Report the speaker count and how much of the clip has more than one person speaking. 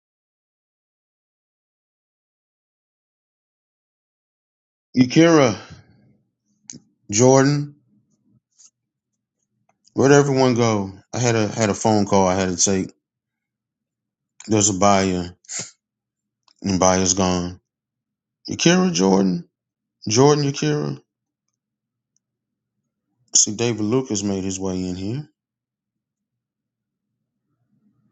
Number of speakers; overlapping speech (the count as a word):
one, no overlap